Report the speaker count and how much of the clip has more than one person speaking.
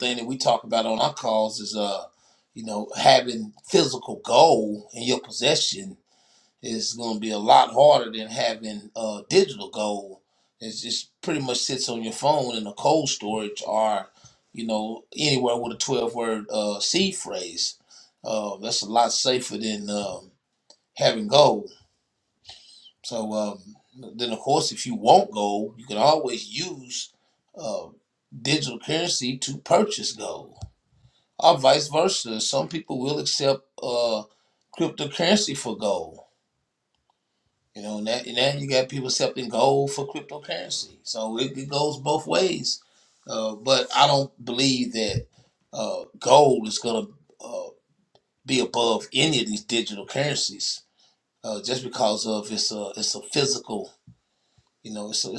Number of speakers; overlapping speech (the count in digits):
1, no overlap